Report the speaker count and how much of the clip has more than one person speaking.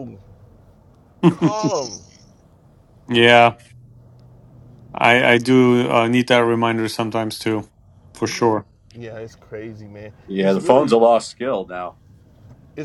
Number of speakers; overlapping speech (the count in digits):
3, about 8%